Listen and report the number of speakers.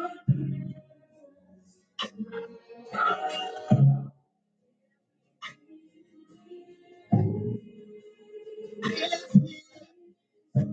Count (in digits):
0